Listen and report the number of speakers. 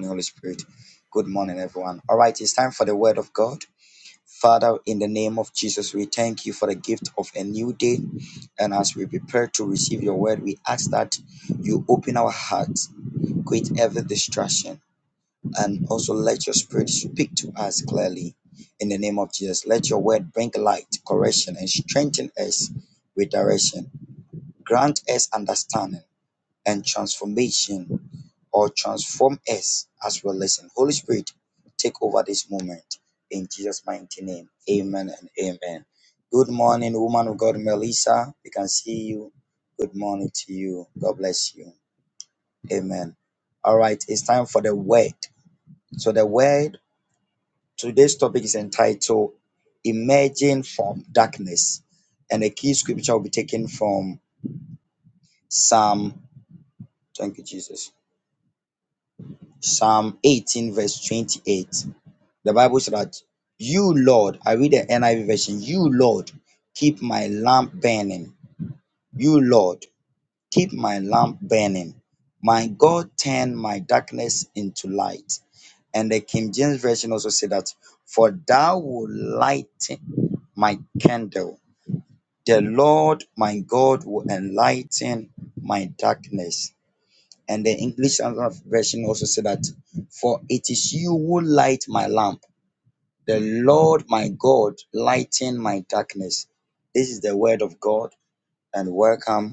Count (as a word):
one